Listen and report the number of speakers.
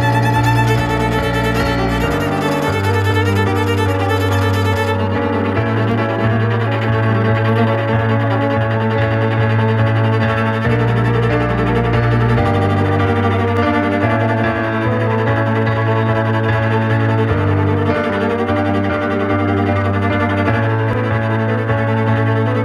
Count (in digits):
0